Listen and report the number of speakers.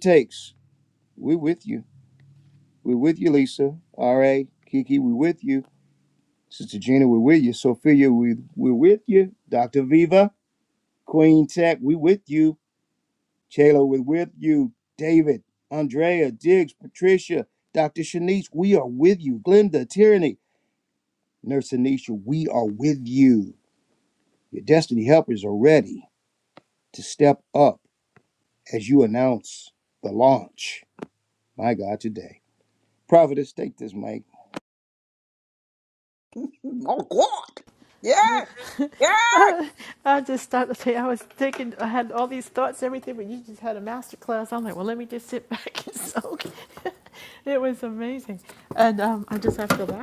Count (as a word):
three